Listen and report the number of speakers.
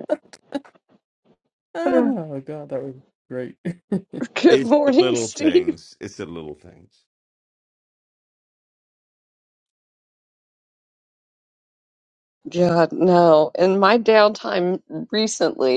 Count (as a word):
three